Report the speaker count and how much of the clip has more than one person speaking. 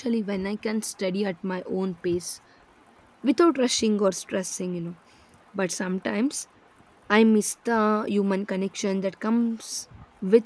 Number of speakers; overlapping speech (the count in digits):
1, no overlap